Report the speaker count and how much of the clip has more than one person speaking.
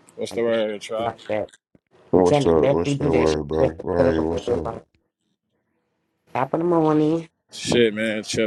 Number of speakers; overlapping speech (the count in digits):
3, about 26%